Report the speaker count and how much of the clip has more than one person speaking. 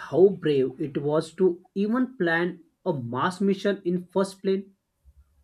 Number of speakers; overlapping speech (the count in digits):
1, no overlap